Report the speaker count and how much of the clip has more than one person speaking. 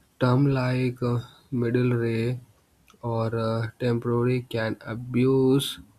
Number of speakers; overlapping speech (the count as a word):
one, no overlap